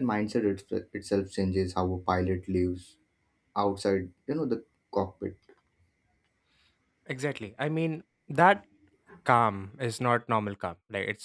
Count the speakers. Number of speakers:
2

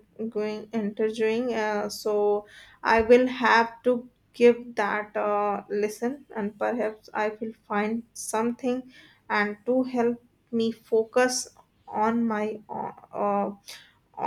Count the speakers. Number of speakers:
1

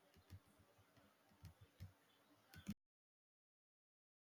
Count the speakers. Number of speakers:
0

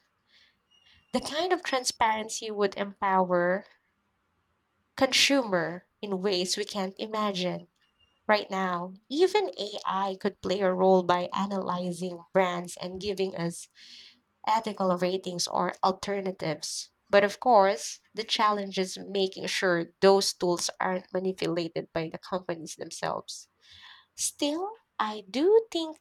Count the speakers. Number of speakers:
1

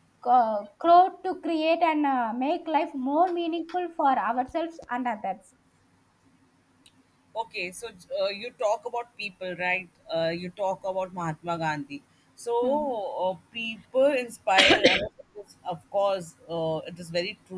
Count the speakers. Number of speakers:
2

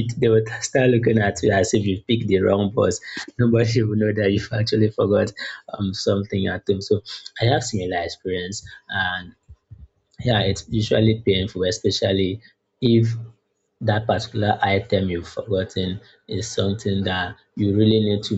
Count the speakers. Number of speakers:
1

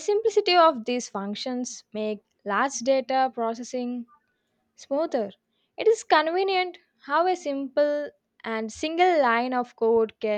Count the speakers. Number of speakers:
1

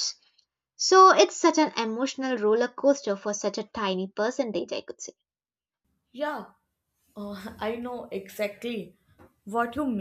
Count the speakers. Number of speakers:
2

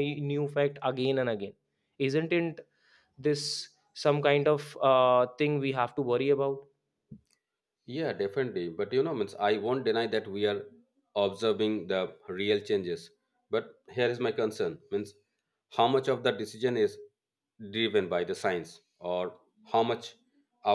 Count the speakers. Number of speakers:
2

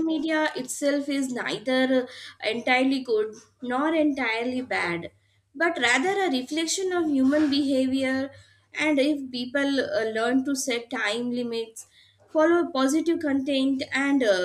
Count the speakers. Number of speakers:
1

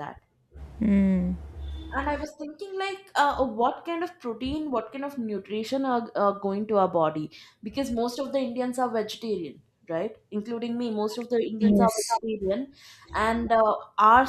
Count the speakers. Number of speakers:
2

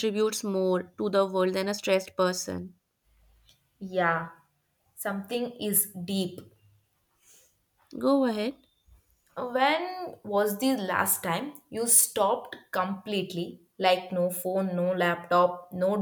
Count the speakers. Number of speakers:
2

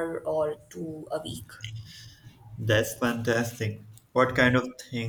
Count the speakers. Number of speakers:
2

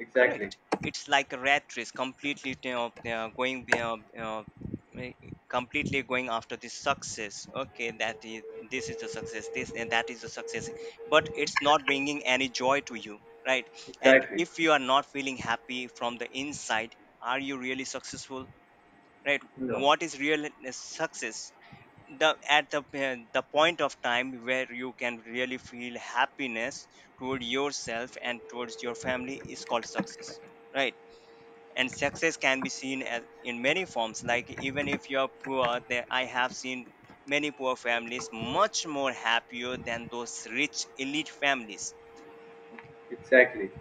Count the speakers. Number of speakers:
2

